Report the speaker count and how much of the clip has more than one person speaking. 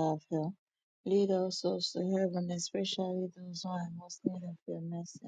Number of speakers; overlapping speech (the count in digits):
1, no overlap